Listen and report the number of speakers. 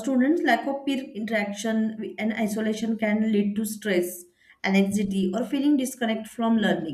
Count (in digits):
1